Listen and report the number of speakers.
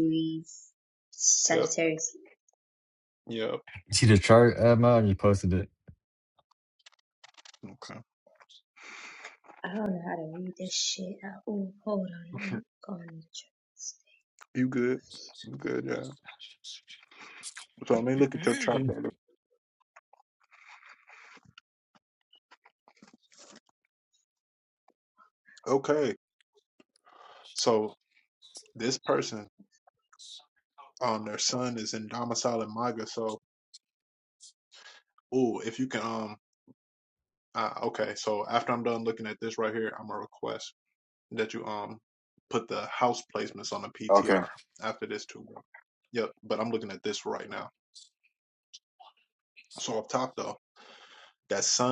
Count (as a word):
three